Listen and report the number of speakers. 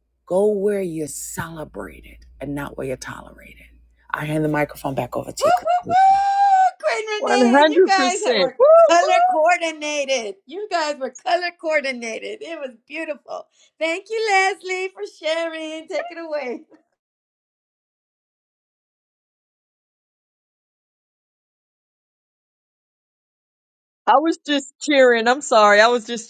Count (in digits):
3